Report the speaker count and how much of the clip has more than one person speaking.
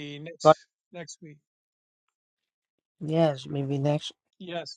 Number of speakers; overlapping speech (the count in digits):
2, about 3%